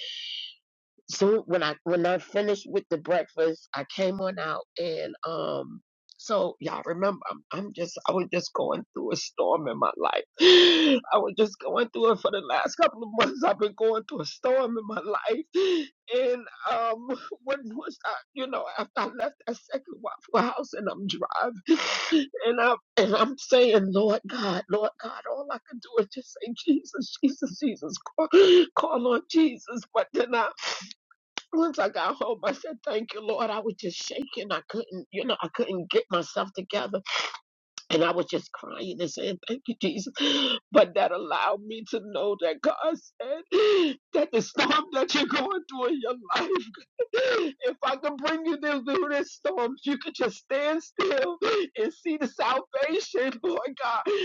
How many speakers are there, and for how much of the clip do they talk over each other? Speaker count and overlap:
1, no overlap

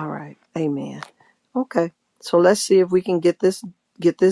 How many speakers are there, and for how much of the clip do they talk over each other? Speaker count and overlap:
1, no overlap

